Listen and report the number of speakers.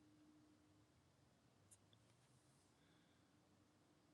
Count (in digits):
0